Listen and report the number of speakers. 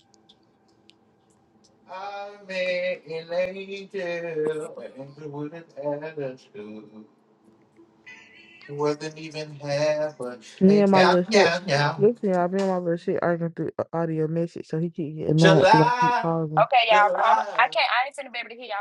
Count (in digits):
3